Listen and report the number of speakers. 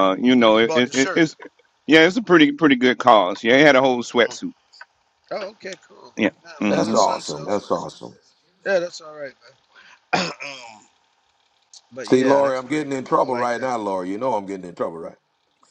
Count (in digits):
3